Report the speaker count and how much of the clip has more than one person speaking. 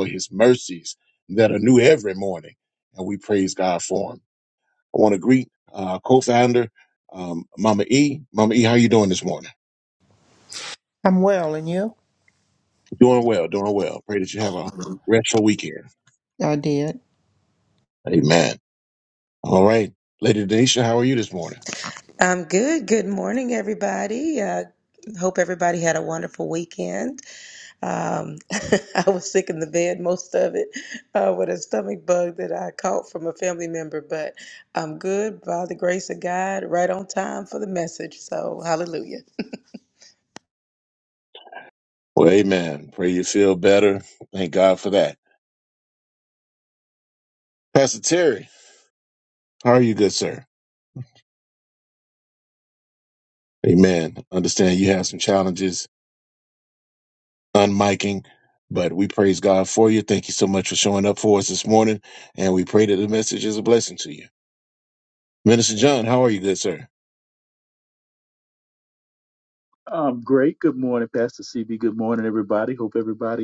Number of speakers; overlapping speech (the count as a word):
four, no overlap